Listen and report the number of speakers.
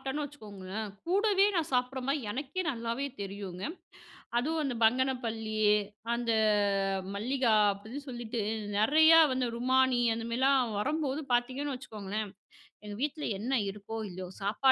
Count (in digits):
1